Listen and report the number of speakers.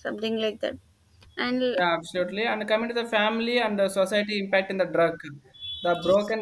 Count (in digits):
2